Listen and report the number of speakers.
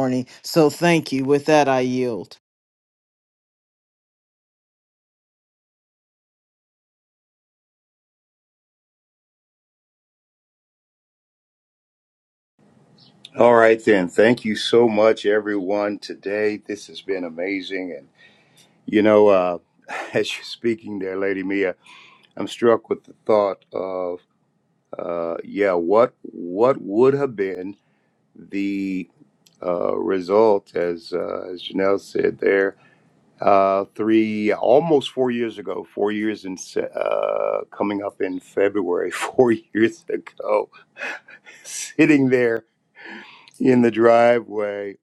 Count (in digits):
2